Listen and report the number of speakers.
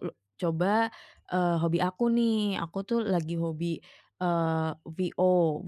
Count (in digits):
1